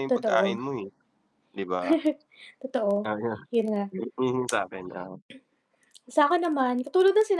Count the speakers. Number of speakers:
2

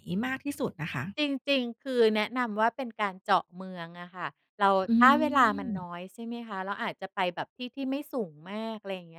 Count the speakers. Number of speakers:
2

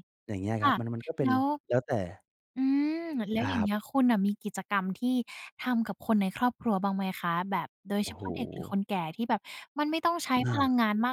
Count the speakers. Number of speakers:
2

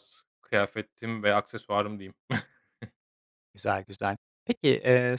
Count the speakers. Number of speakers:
2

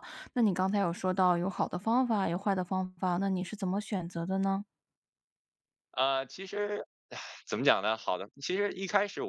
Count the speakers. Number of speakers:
2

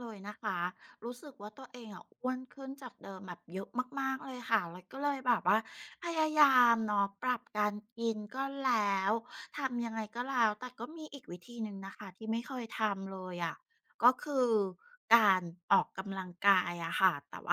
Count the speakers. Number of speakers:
1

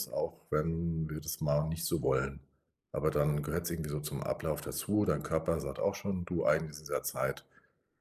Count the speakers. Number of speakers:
1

